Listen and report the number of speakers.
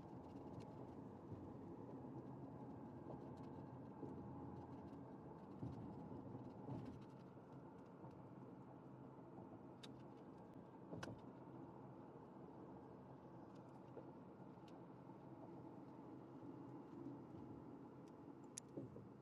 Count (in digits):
0